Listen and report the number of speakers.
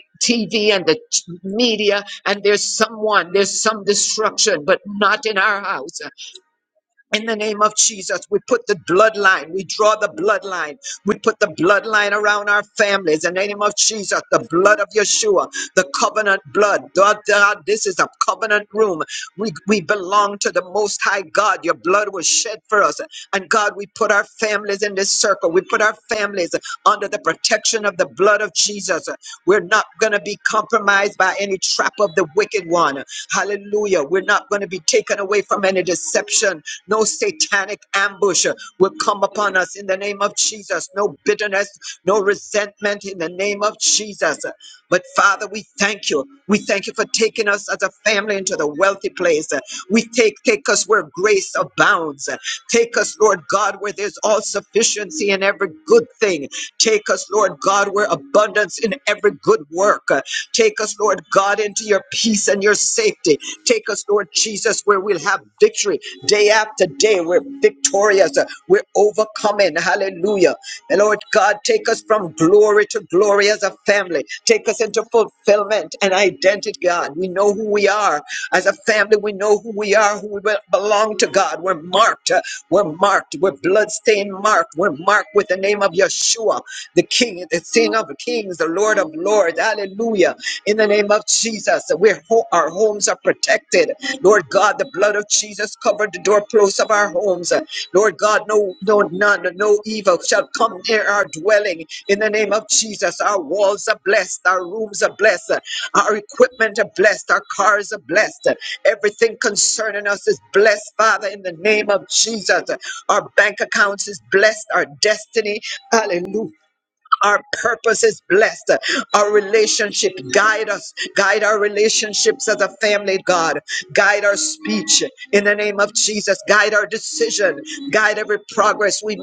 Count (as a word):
one